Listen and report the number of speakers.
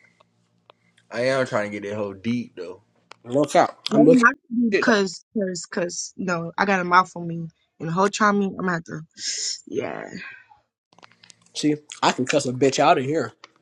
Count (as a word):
three